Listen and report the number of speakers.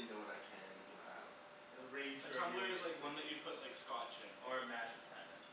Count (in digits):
3